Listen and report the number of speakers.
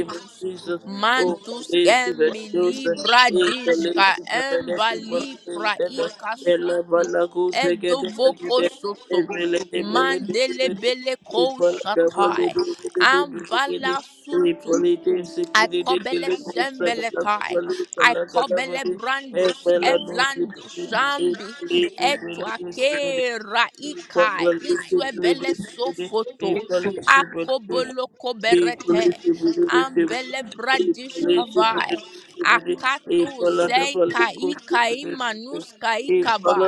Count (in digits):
2